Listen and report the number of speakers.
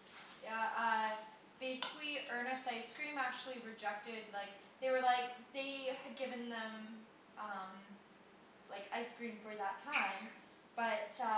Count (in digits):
1